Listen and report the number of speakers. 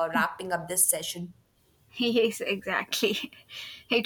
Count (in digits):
2